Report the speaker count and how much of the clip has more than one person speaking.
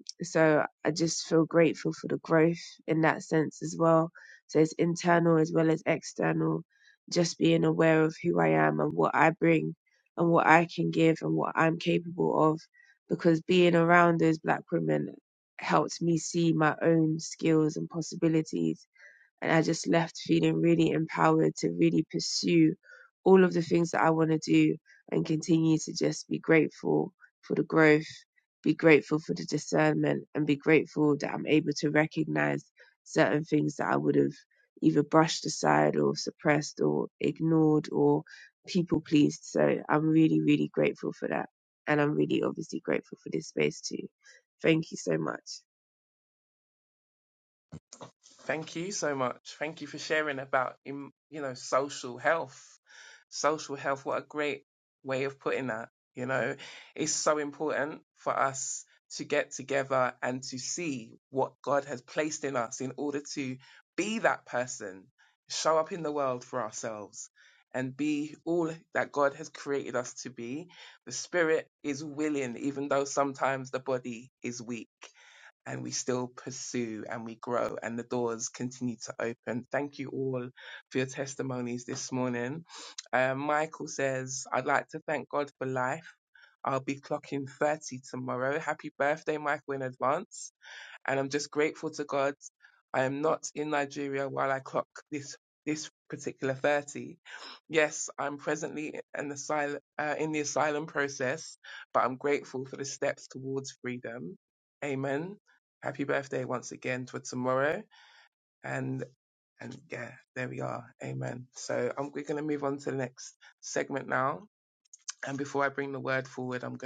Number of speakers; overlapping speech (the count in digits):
2, no overlap